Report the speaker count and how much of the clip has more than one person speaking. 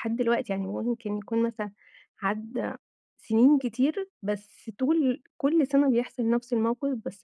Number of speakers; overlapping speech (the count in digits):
1, no overlap